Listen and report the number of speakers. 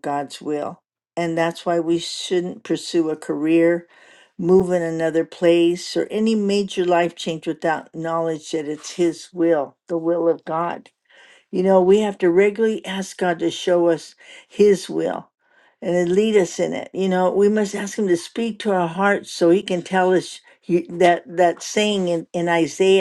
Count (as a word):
one